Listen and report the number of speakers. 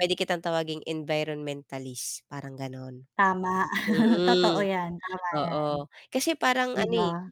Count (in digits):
2